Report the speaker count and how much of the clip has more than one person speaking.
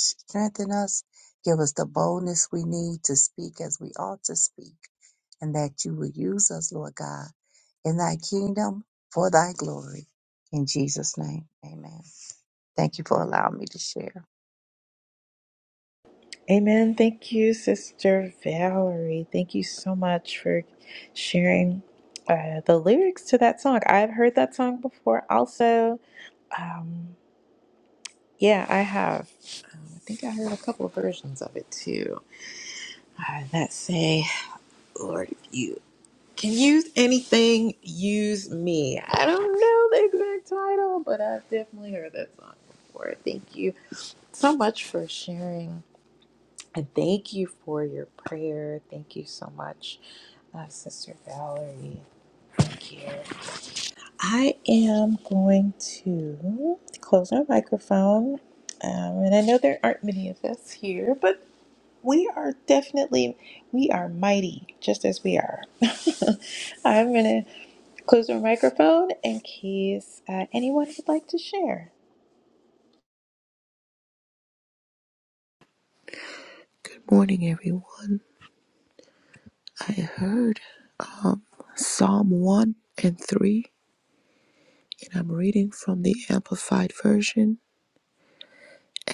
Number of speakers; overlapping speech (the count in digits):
3, no overlap